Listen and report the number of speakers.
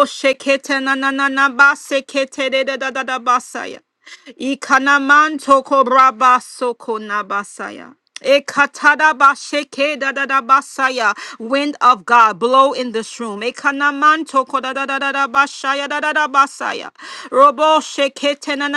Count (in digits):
1